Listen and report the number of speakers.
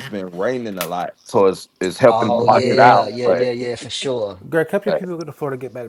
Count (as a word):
three